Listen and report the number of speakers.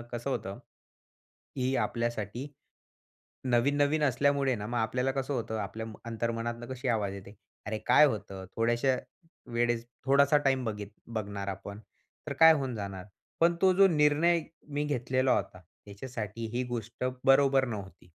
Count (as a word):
one